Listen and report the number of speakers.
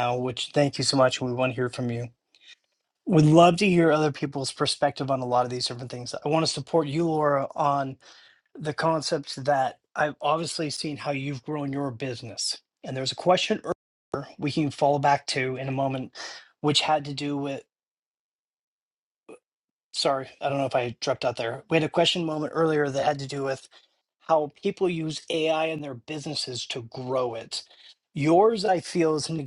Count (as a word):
one